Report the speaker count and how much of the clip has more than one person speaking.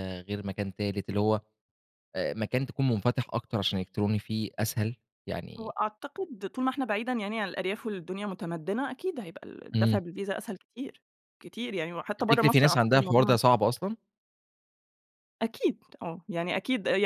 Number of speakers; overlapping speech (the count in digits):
2, about 8%